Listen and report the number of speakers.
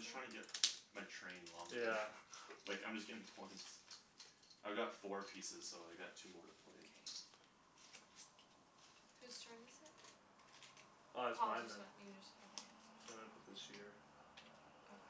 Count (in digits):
3